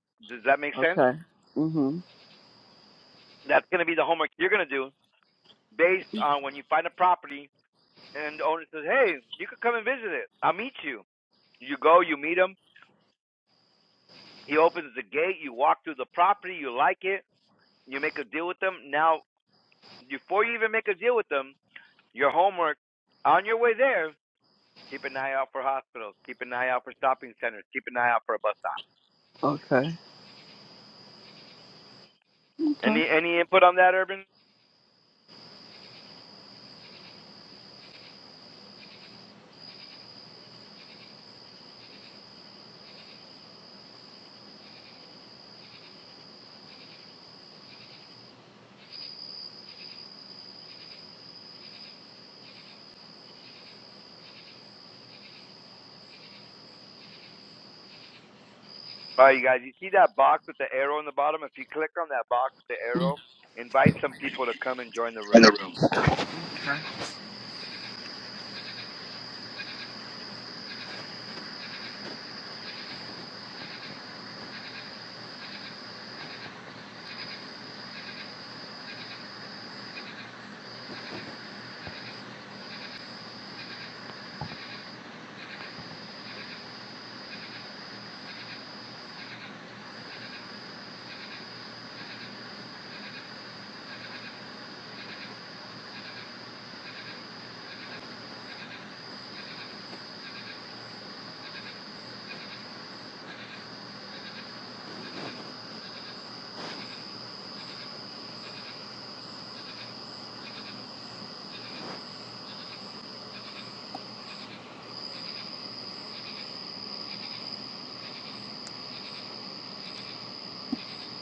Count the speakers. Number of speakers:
2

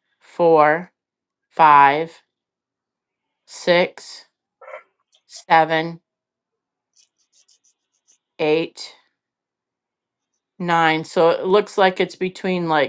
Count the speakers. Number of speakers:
1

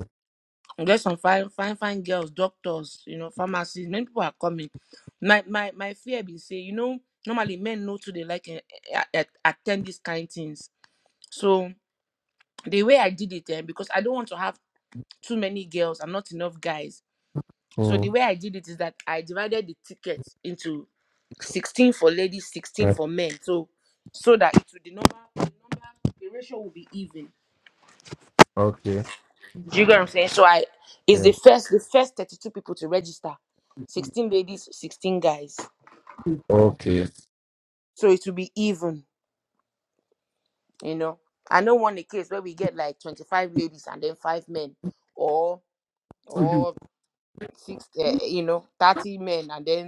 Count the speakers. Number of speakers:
2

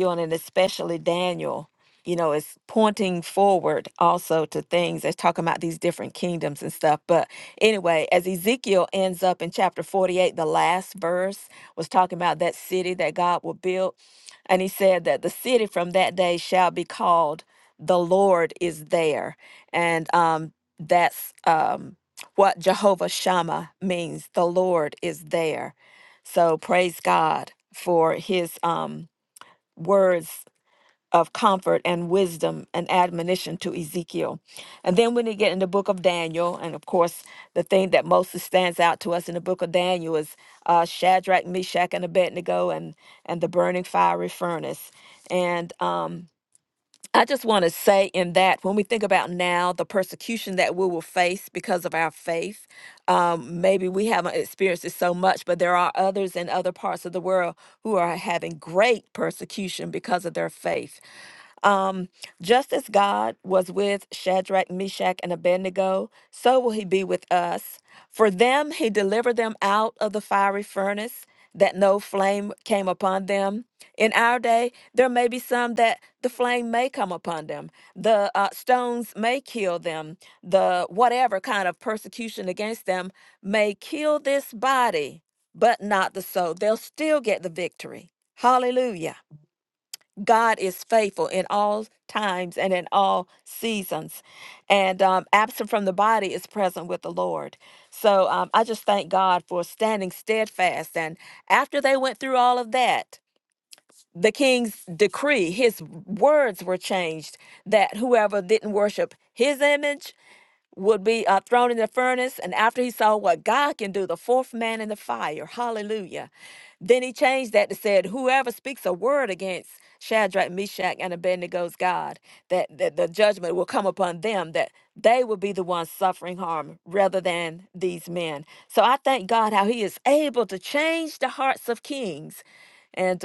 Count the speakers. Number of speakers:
1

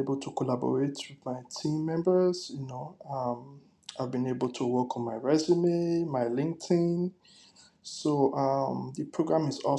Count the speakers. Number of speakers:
1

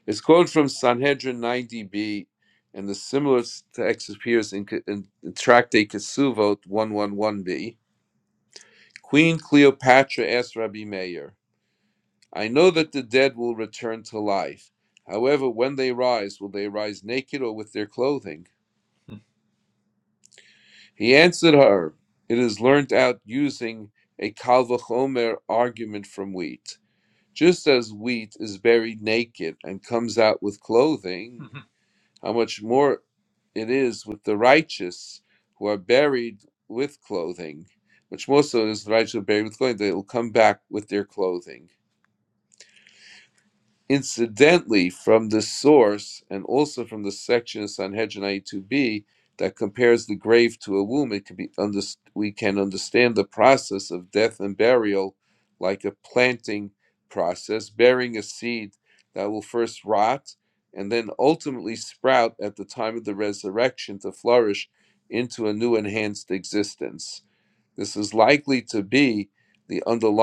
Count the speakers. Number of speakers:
1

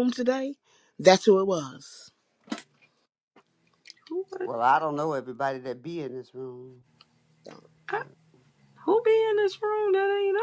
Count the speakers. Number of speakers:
3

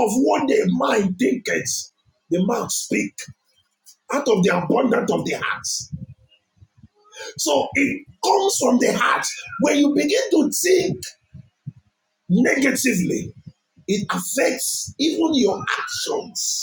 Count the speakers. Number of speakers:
1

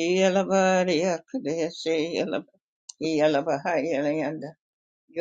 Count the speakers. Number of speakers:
1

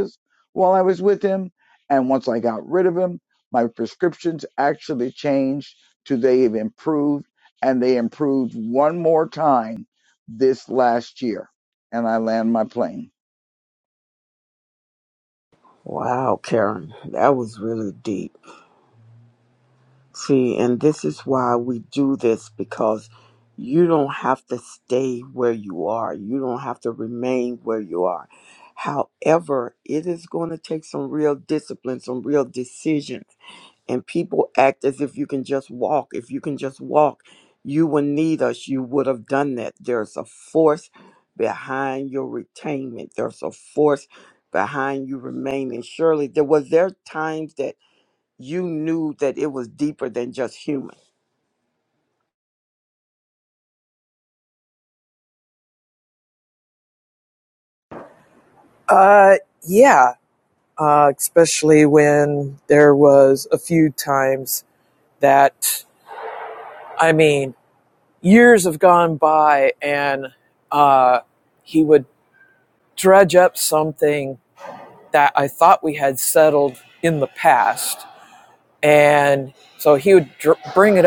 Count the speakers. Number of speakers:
3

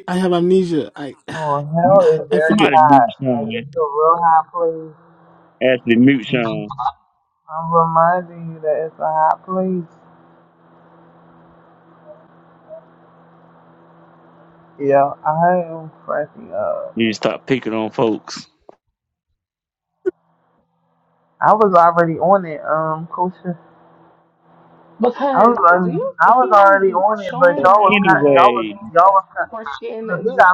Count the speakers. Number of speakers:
4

